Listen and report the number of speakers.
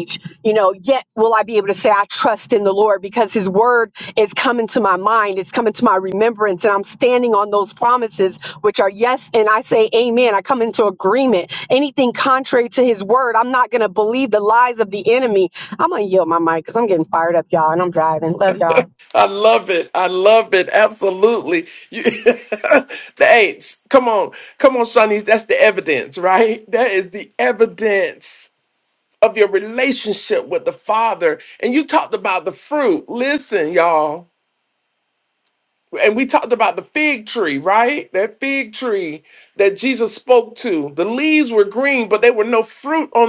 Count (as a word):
two